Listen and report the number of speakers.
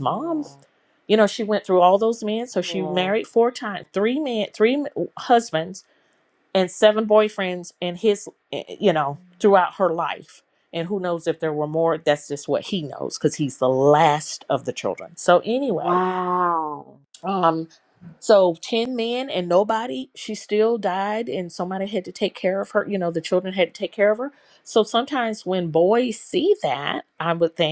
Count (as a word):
two